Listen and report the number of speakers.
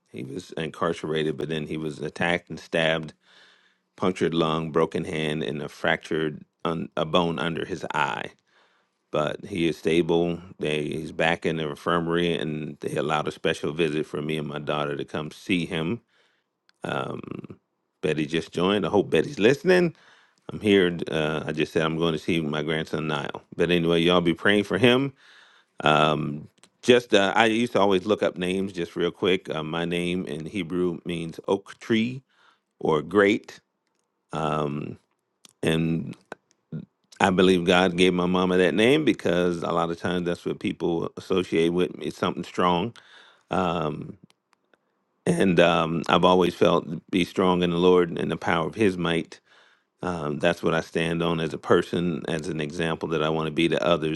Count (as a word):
one